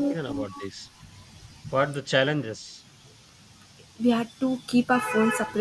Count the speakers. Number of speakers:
2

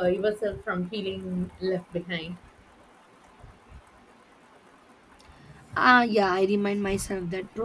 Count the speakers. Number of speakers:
2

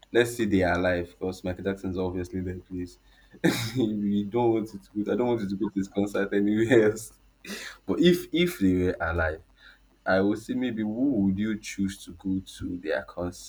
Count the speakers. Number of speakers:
1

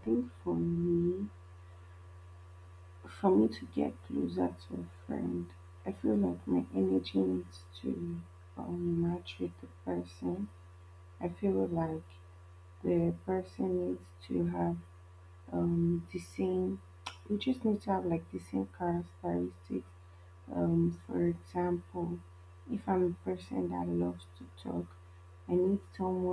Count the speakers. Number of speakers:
1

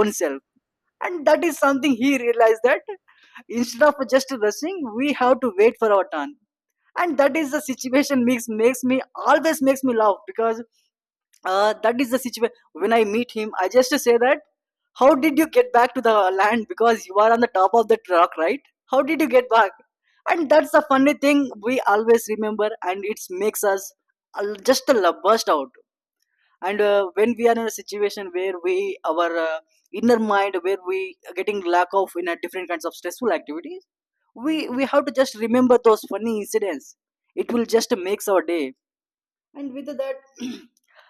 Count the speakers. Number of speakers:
1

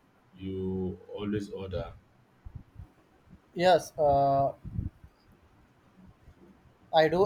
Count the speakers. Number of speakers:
2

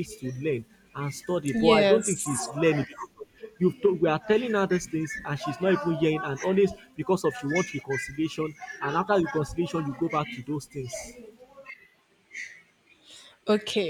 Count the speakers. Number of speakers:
2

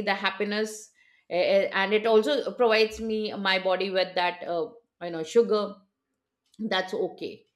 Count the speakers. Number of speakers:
1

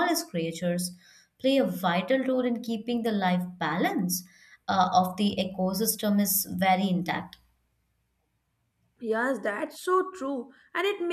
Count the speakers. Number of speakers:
2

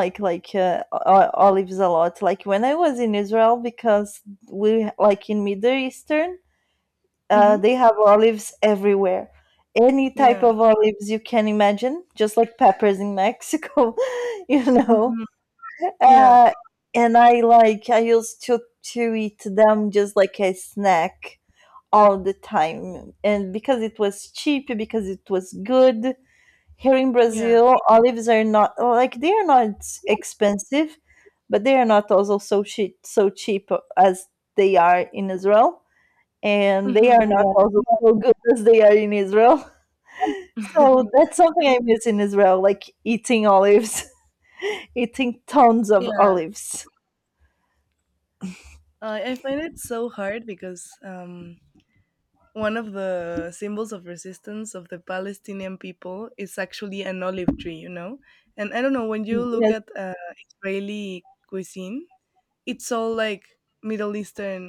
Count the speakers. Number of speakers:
2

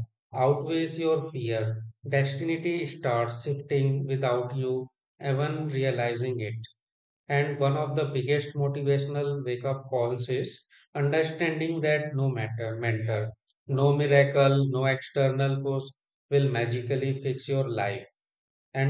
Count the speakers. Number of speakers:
1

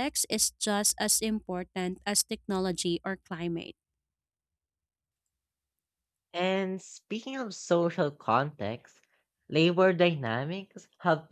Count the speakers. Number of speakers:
2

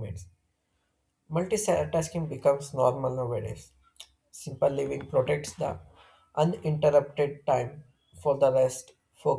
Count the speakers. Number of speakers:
1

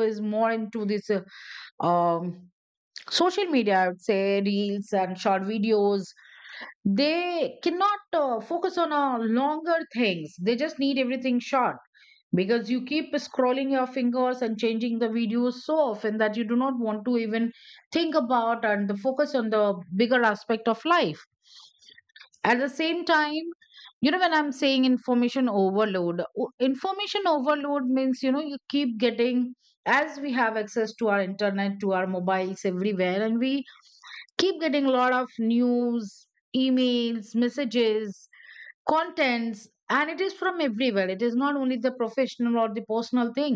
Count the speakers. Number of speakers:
1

